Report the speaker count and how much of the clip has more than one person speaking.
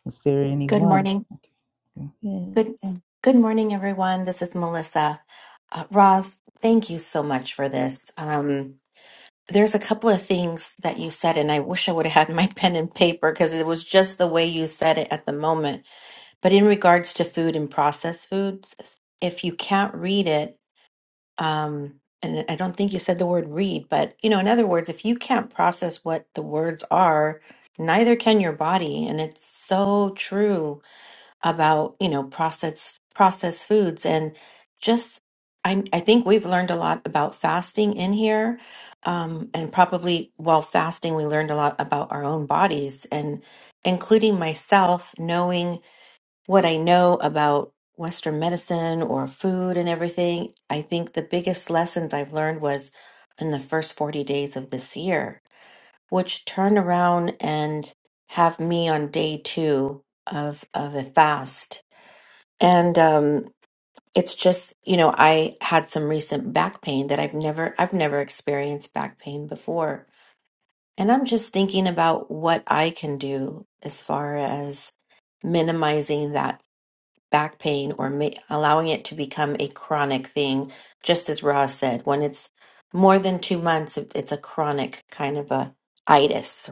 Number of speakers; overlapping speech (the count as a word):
two, under 1%